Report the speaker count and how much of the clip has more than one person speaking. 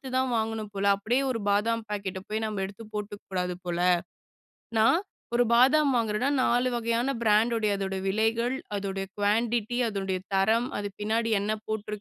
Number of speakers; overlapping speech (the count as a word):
one, no overlap